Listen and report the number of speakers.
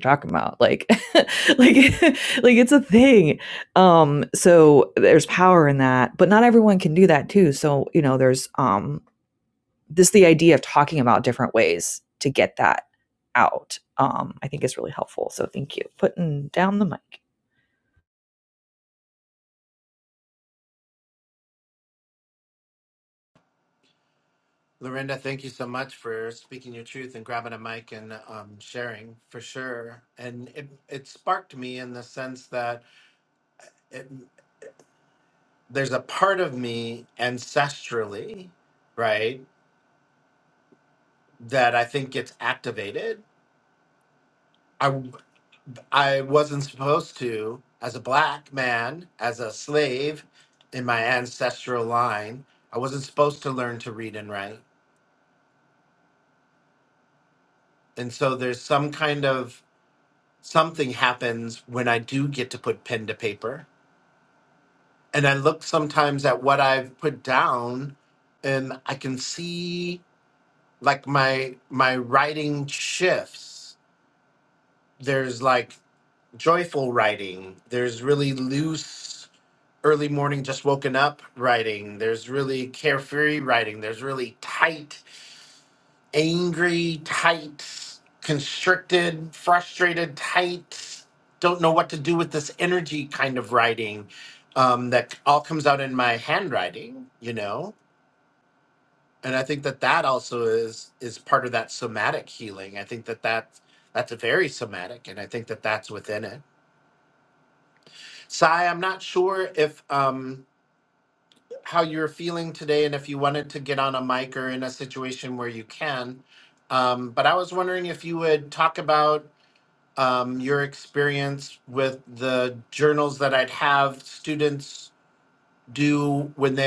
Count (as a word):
two